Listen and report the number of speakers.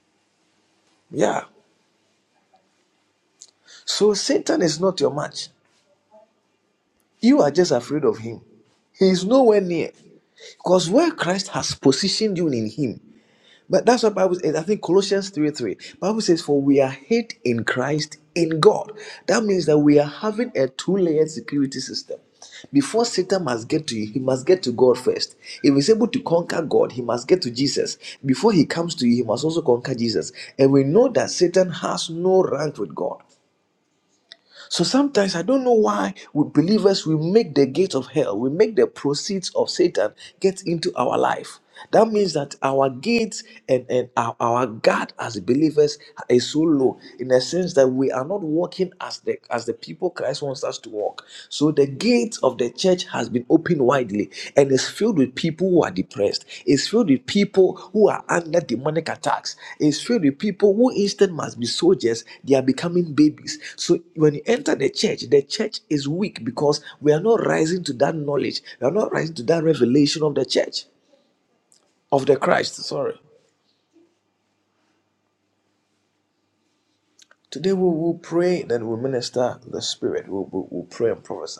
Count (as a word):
one